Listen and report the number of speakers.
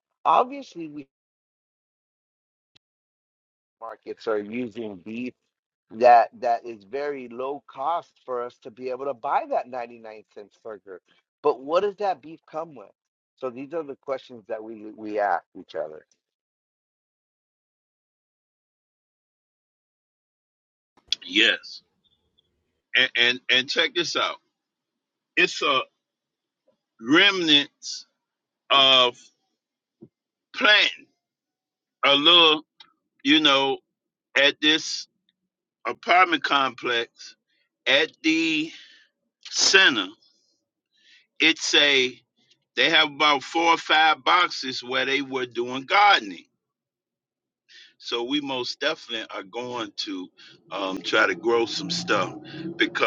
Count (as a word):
two